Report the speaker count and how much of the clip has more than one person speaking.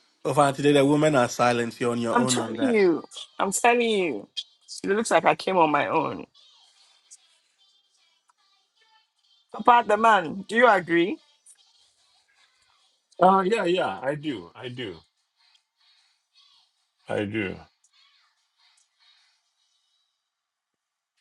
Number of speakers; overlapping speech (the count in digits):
3, about 3%